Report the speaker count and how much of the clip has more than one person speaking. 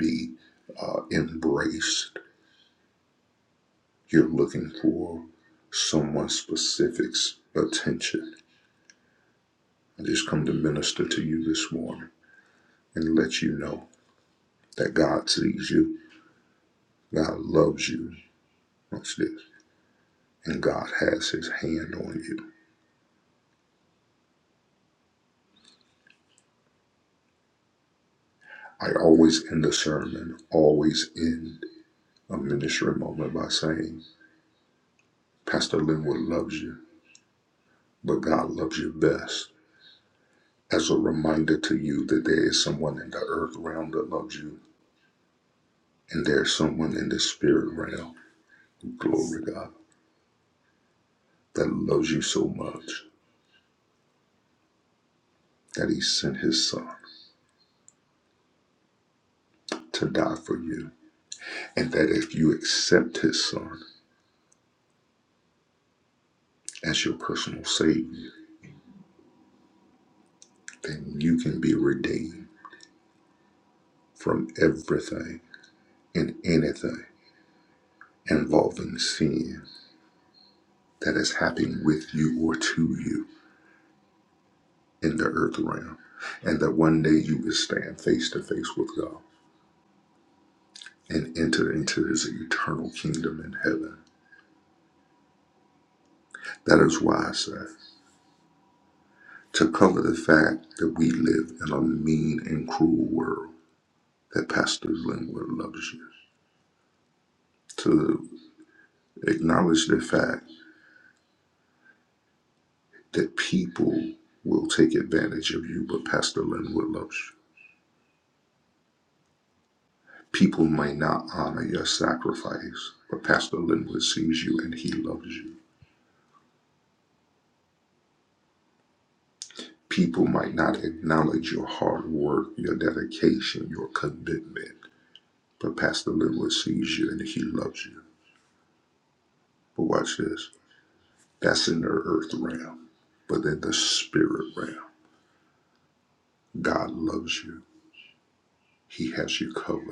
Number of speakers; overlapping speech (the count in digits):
1, no overlap